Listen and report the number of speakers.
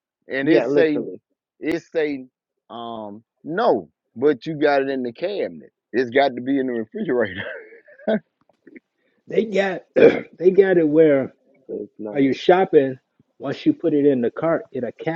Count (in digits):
3